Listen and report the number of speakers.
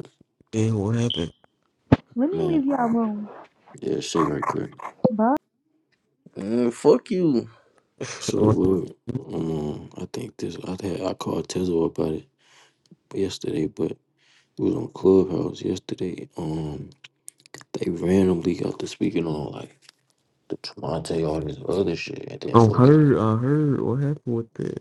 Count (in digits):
4